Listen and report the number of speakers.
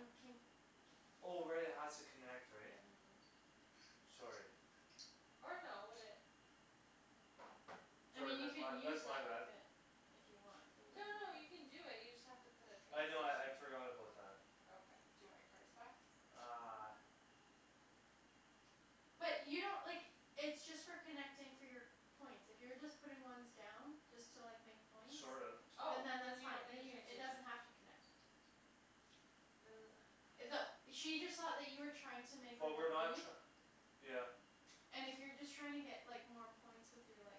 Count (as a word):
three